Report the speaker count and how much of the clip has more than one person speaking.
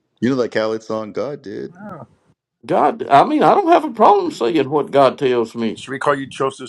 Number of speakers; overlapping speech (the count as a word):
three, no overlap